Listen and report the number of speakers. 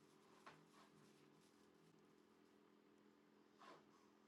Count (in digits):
0